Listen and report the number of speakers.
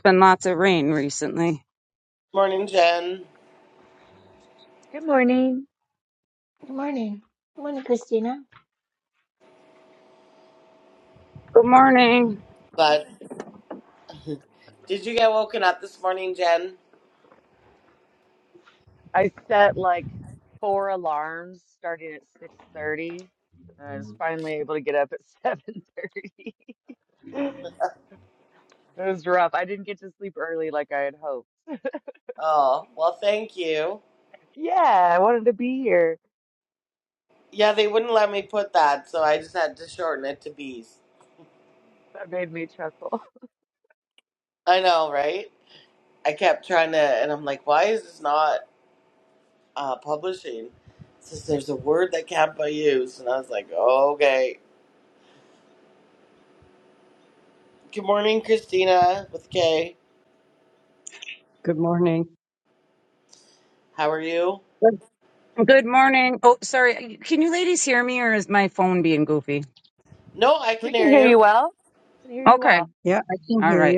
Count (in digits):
5